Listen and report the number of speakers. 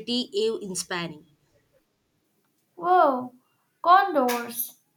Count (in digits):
2